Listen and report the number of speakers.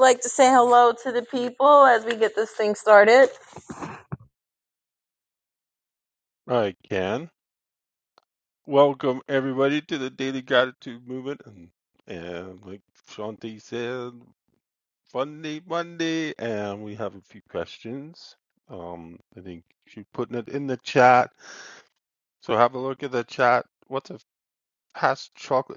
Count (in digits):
2